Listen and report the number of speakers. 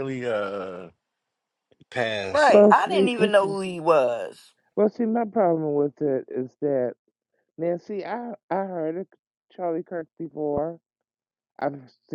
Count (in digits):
3